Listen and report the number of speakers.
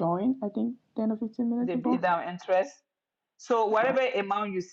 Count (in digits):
2